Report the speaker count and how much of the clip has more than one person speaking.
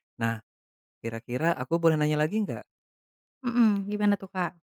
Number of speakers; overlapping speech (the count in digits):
2, no overlap